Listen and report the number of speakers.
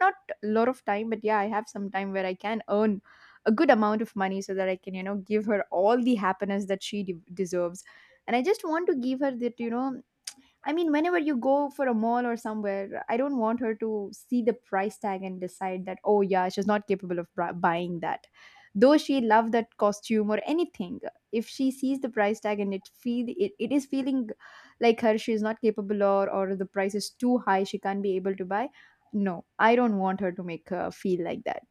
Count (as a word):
one